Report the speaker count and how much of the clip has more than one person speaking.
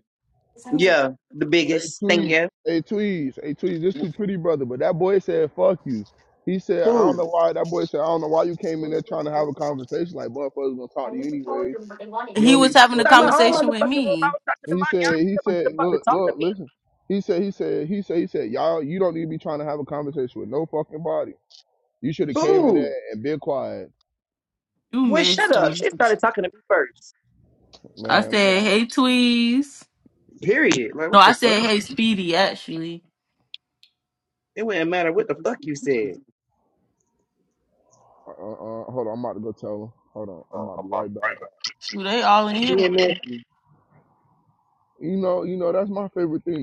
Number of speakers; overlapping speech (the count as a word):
three, about 16%